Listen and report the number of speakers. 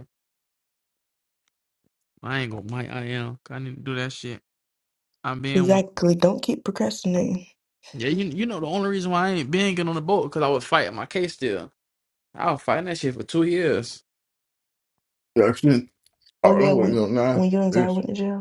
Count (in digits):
3